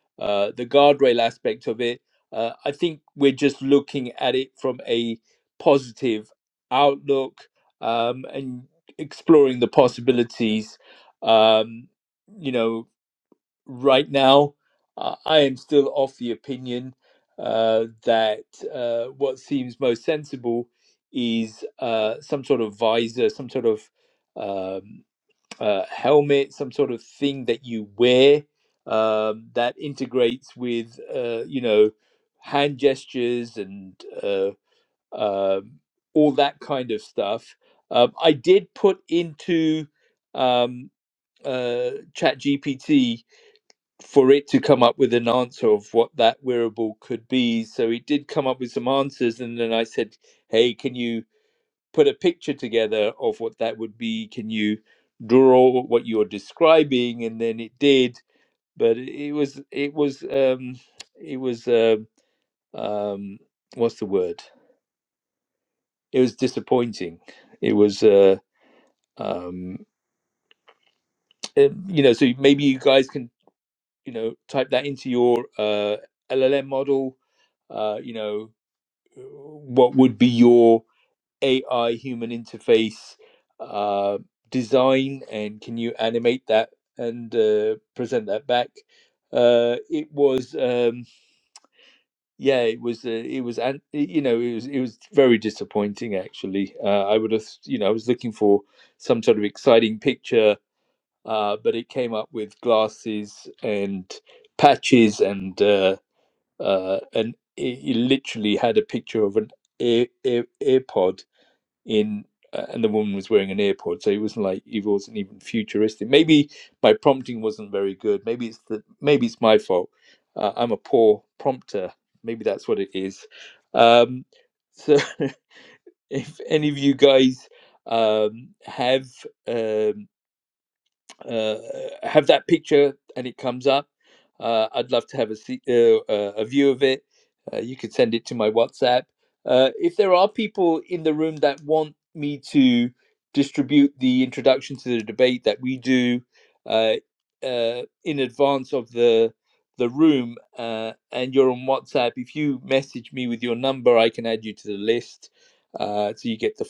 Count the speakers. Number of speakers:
one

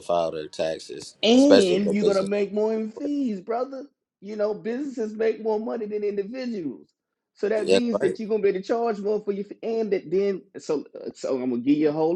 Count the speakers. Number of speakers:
two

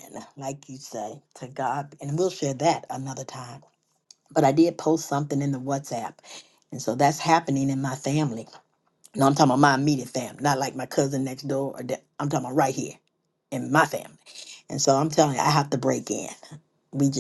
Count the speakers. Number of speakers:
one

